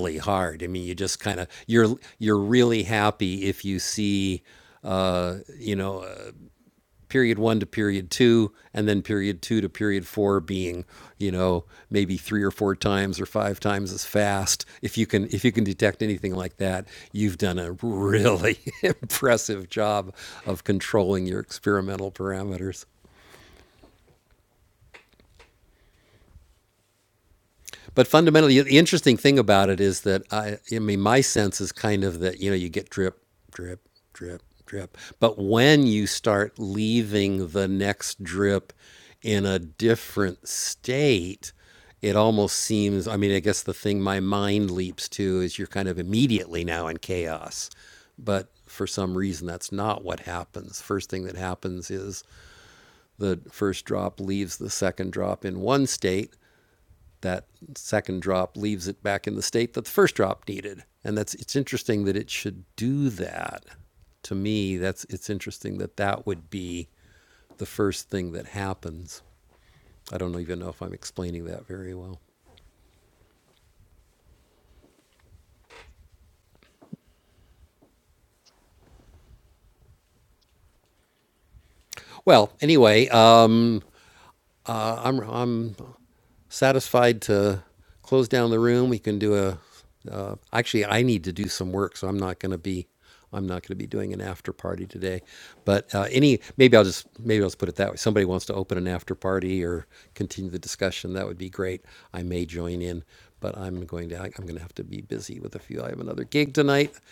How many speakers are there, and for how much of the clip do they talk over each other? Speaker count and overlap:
1, no overlap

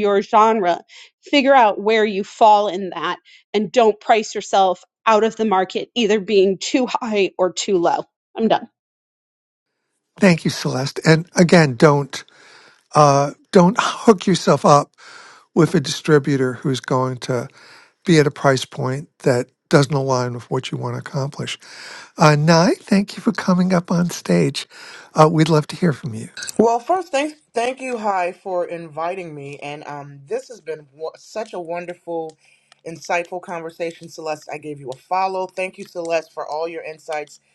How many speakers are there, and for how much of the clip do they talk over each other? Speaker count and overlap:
3, no overlap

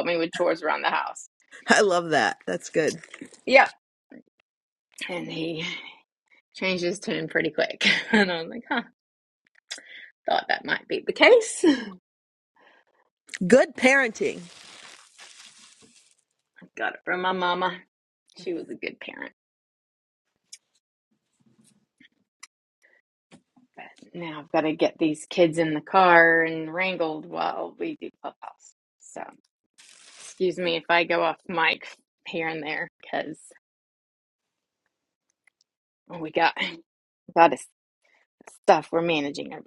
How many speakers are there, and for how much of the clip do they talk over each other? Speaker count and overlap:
2, no overlap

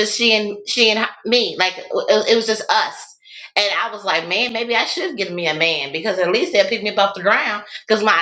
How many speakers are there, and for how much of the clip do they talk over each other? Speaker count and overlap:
1, no overlap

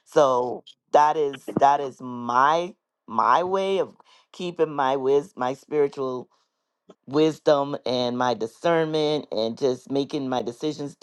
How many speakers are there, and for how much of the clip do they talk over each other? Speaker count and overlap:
1, no overlap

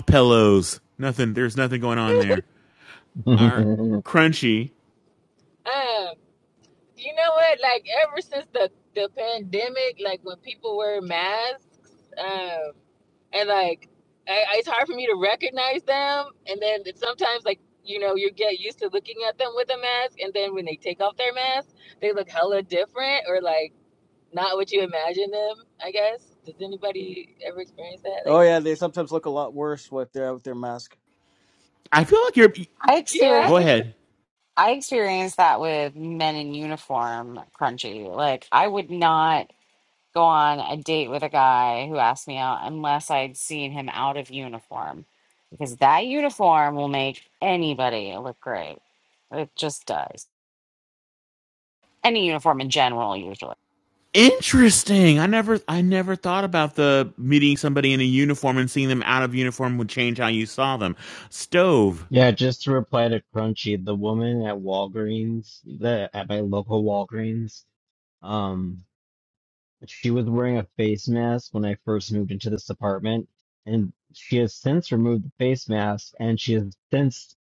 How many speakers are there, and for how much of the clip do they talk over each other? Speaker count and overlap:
5, about 1%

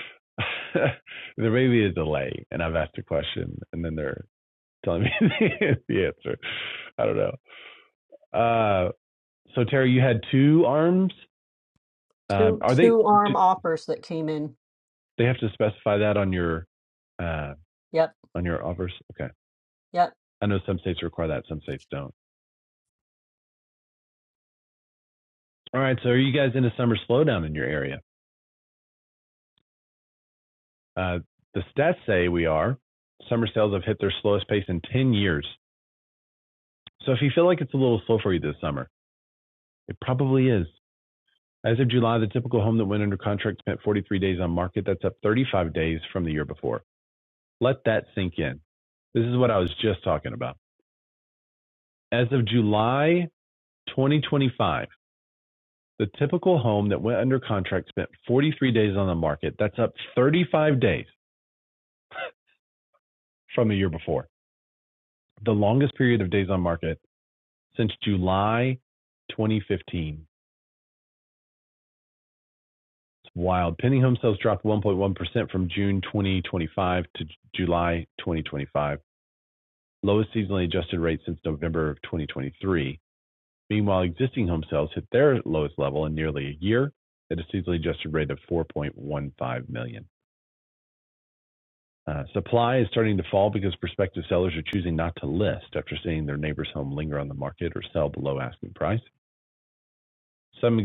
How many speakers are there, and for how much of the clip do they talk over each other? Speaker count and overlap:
2, about 1%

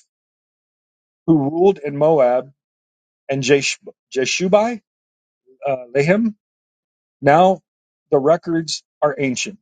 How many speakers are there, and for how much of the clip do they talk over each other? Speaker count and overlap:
1, no overlap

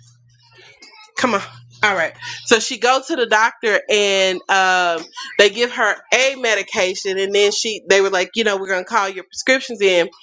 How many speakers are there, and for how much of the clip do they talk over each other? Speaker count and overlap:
1, no overlap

